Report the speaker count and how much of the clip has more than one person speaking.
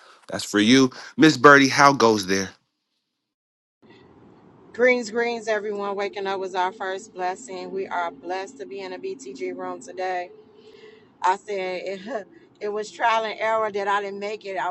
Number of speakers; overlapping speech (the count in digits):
2, no overlap